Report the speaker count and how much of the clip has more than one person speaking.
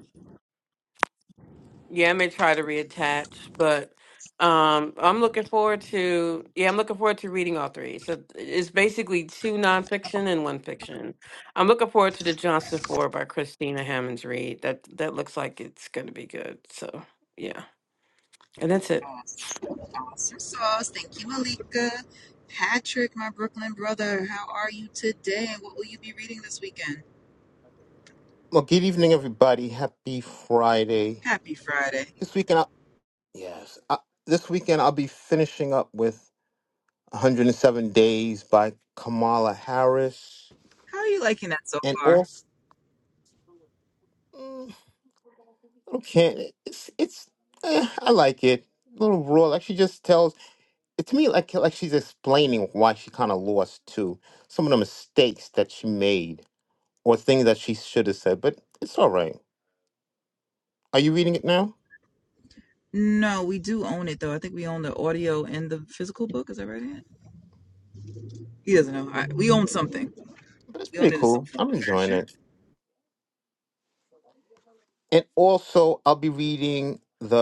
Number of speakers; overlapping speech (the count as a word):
three, about 2%